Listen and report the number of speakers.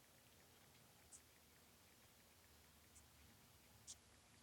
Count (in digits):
0